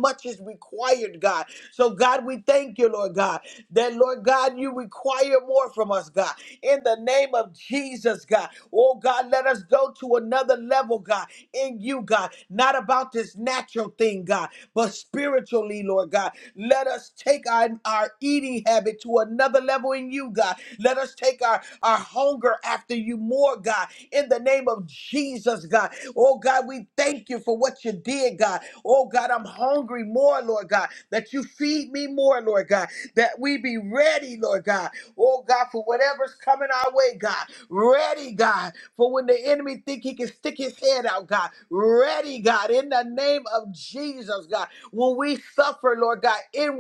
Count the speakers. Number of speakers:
1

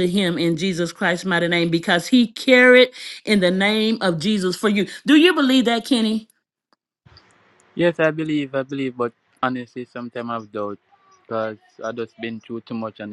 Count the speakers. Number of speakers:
2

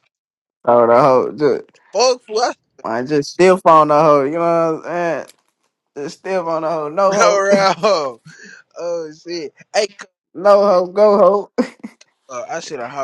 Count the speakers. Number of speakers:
2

